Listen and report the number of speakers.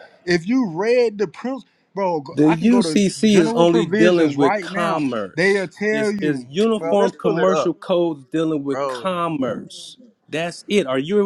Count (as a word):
two